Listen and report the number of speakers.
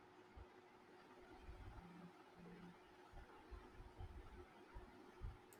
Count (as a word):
zero